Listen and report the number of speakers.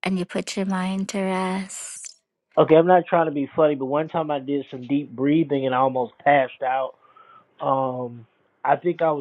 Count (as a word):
two